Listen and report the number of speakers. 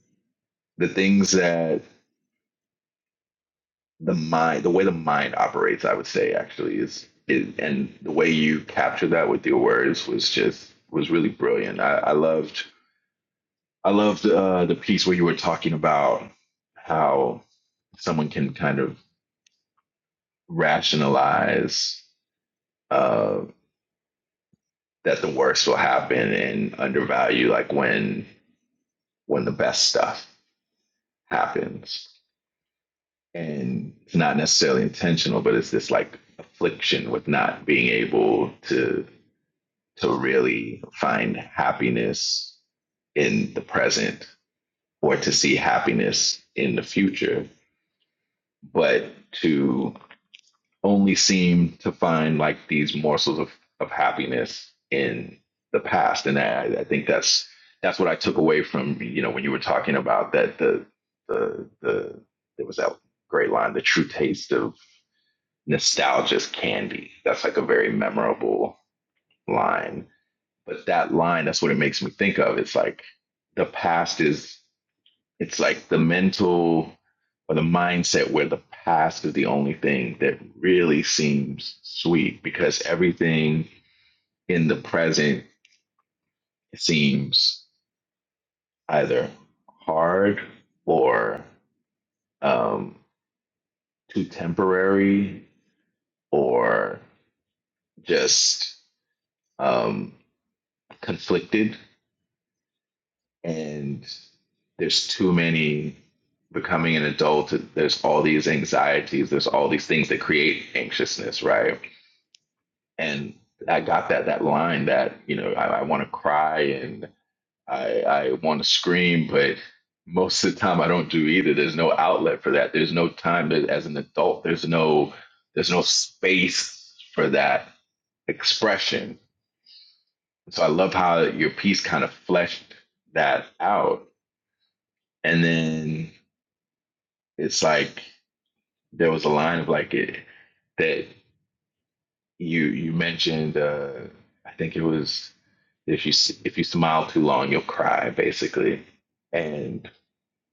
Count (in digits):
1